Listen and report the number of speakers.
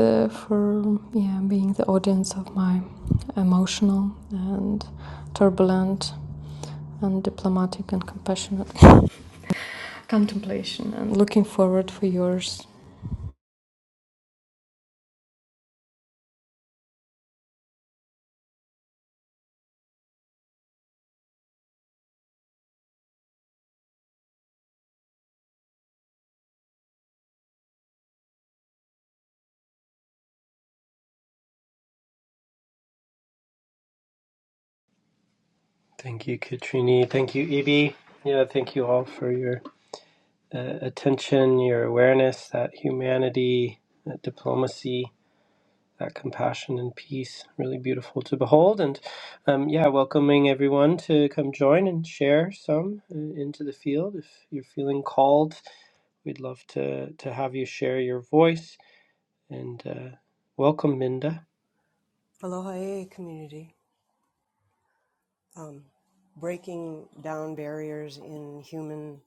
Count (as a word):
three